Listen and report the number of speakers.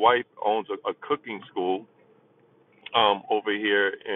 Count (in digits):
1